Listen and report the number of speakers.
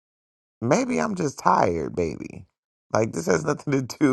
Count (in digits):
1